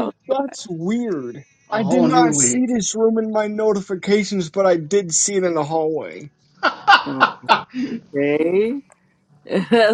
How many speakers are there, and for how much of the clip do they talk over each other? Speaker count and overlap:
3, about 10%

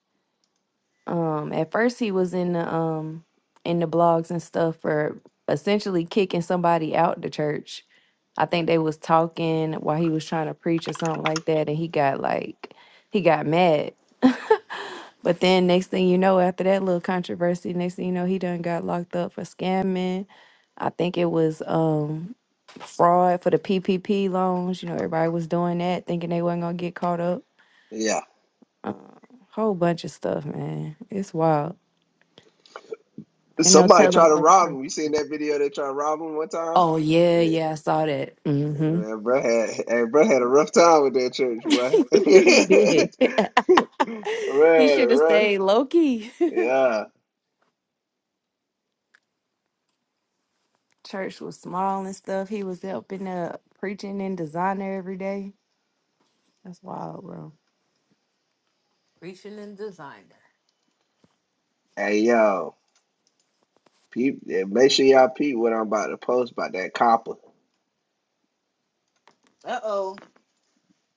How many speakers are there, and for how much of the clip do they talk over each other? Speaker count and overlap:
3, about 3%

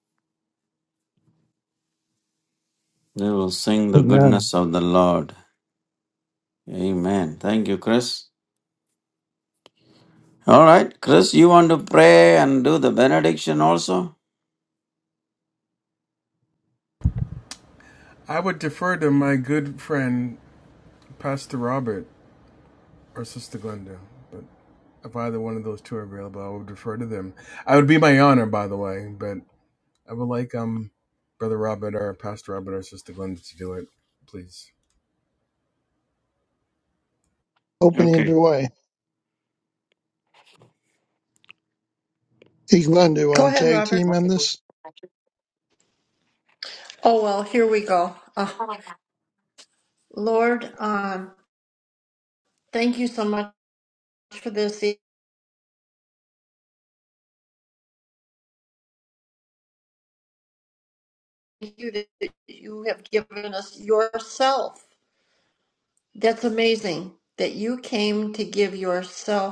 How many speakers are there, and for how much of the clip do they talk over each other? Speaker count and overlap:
4, about 2%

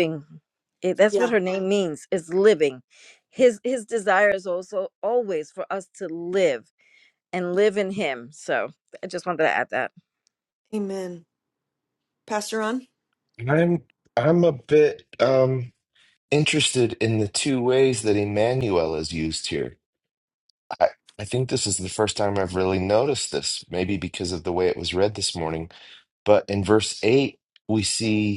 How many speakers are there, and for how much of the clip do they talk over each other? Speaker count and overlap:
3, about 1%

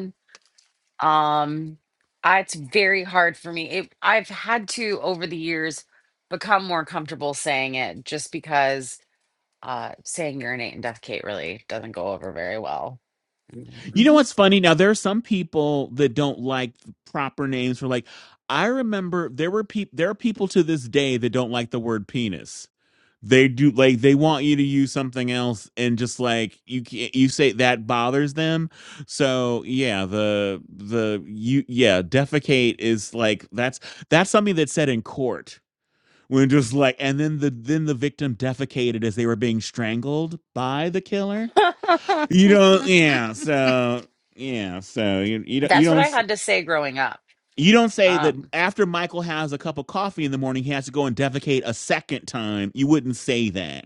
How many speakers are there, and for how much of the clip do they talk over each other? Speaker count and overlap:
2, about 2%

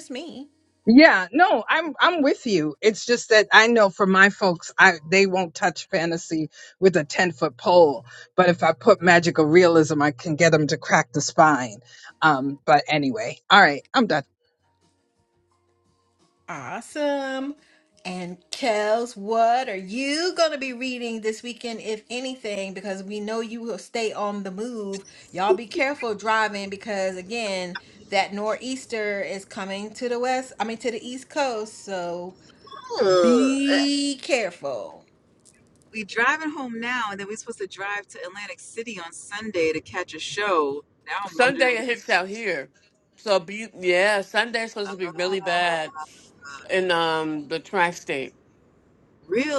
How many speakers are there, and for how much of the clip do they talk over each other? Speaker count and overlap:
4, about 4%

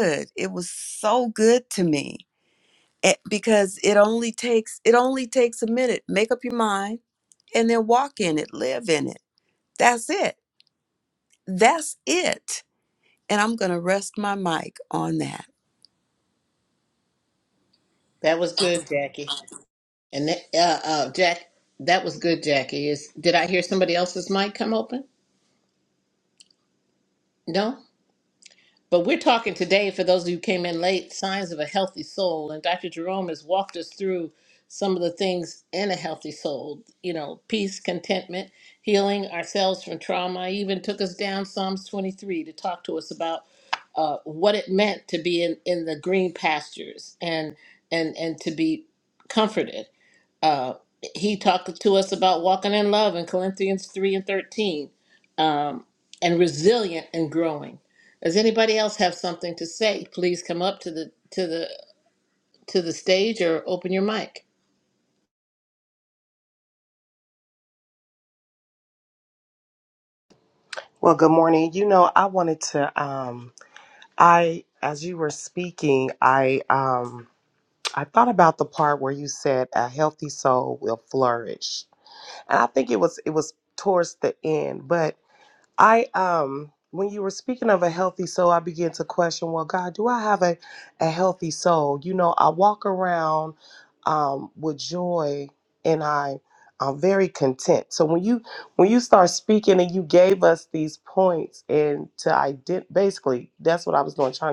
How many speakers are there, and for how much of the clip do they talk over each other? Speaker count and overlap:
3, no overlap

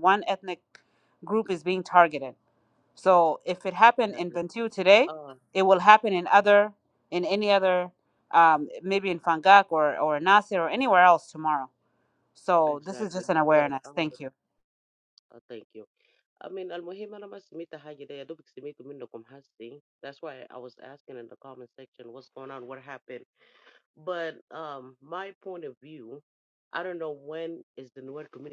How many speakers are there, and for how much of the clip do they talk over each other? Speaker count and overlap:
2, about 7%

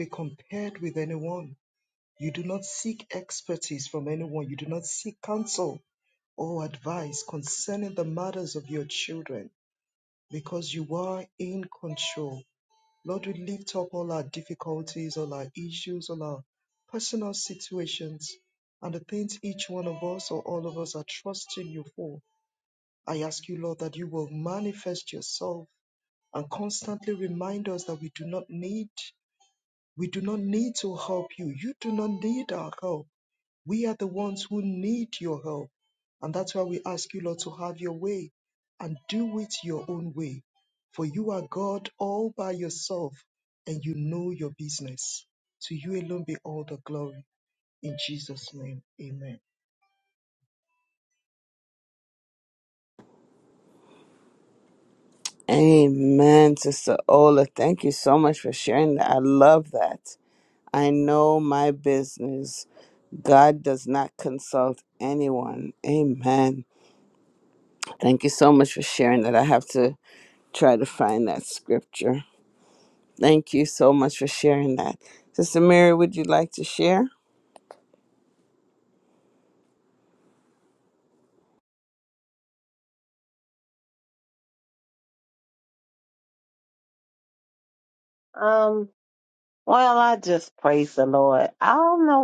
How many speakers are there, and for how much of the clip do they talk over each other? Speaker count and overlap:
3, no overlap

